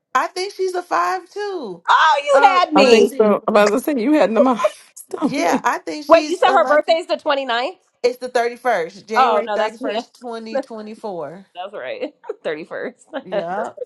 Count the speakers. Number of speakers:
three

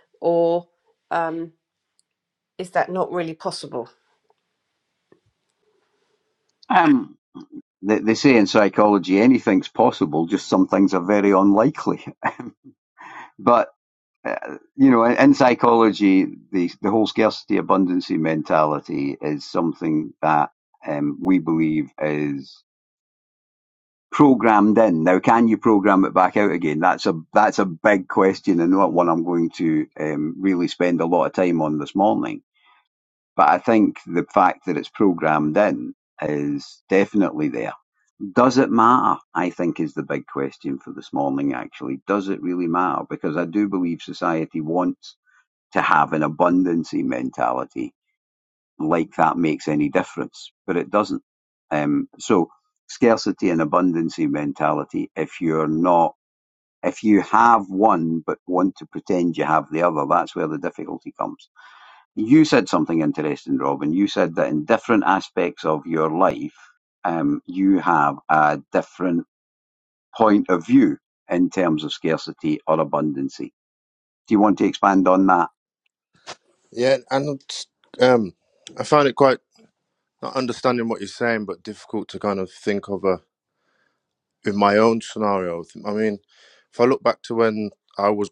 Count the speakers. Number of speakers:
three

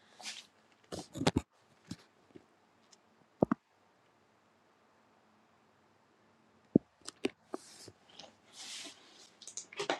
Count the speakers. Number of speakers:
zero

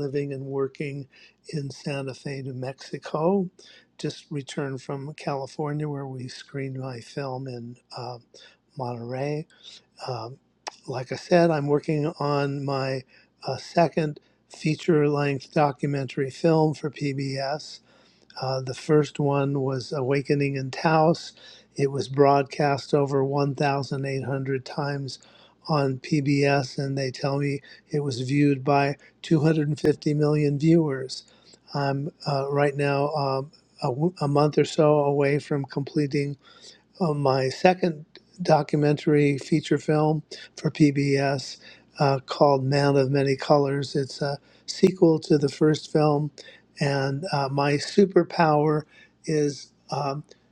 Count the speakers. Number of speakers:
one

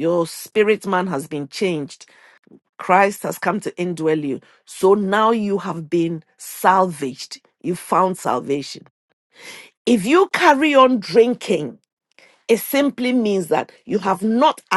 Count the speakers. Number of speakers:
one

